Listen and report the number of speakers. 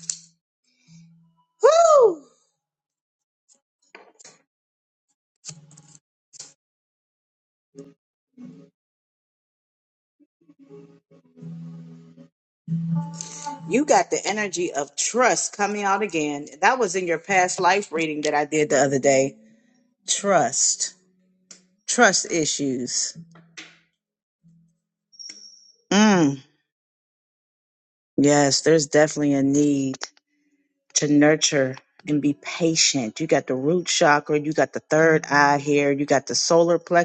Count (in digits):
1